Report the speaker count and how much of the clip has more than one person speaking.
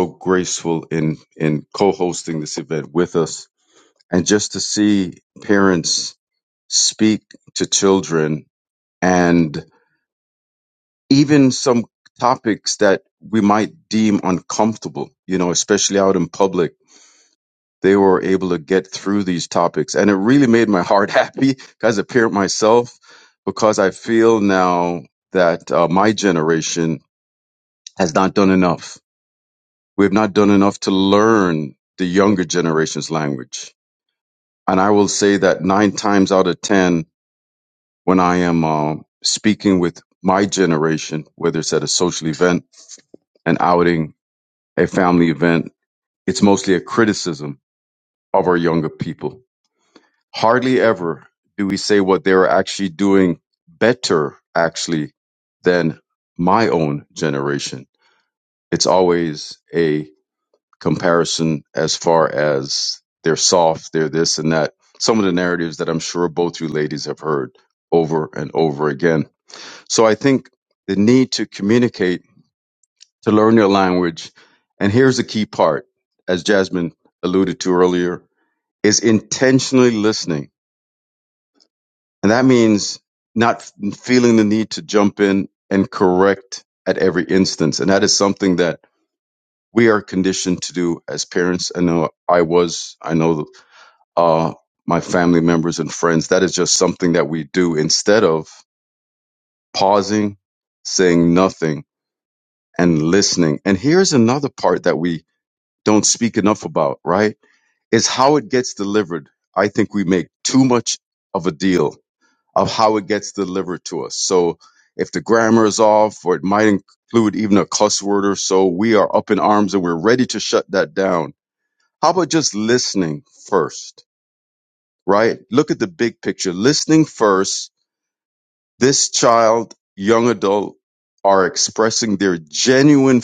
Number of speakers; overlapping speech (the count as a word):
one, no overlap